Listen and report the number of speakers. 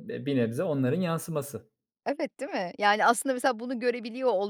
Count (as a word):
two